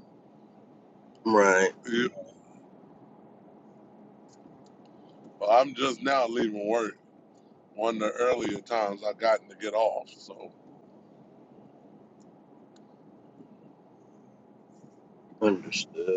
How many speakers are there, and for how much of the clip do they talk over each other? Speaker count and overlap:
two, no overlap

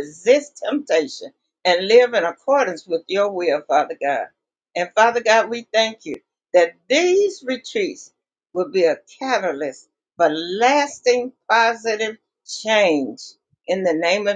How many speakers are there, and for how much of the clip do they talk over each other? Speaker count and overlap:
one, no overlap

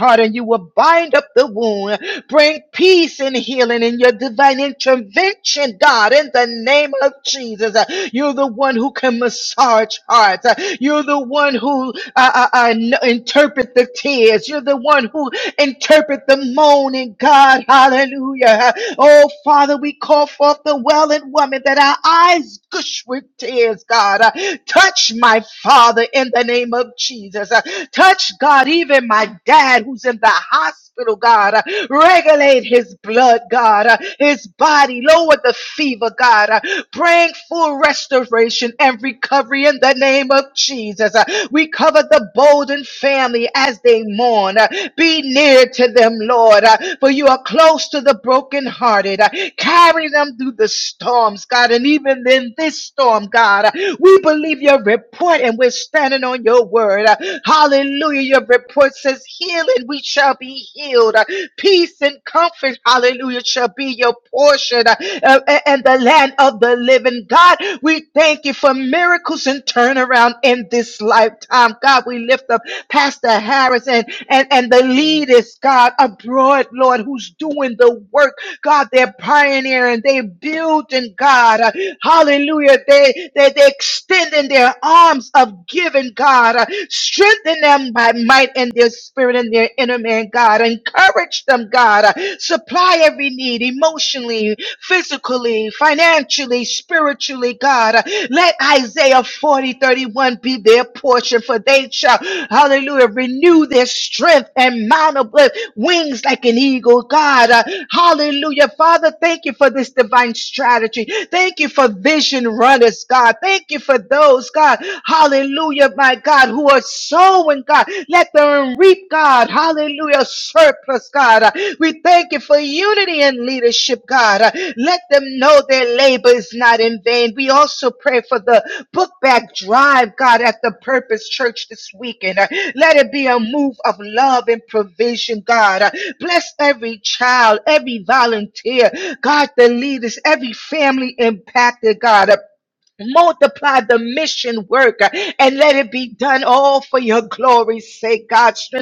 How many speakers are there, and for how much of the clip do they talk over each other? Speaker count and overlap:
one, no overlap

